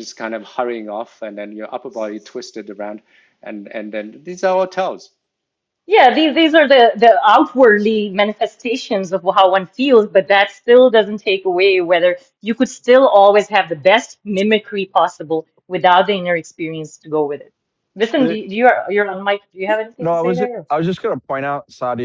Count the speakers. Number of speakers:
3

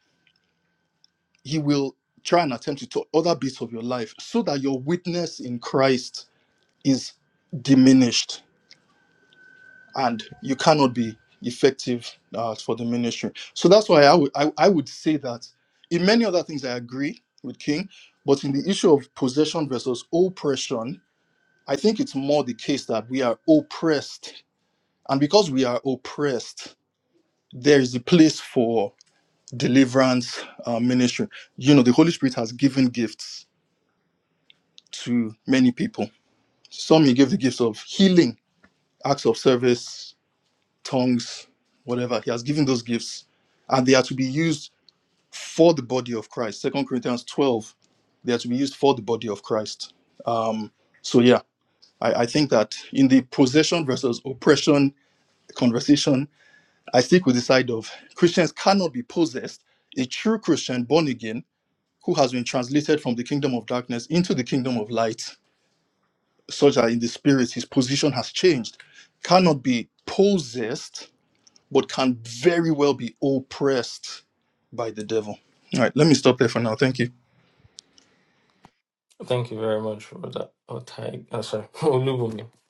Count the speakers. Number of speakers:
2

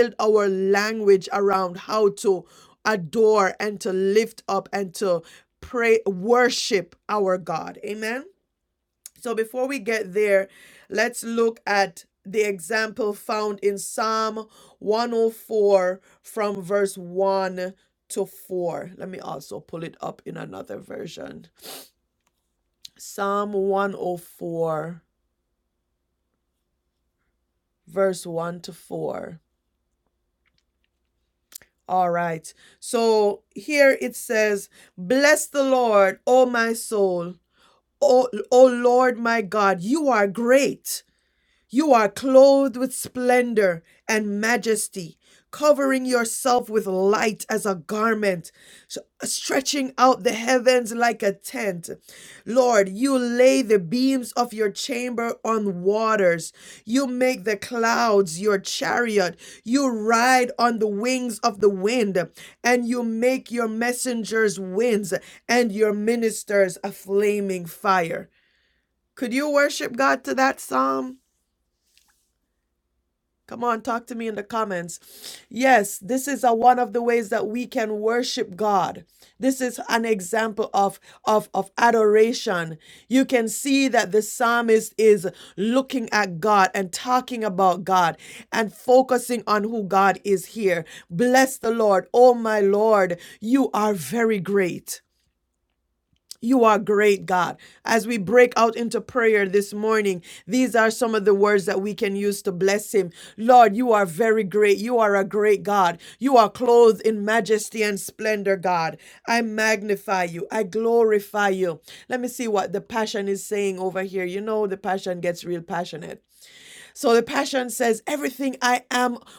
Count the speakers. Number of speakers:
1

